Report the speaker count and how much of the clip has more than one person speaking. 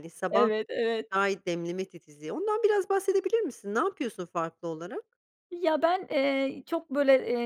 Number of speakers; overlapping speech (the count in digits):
2, about 2%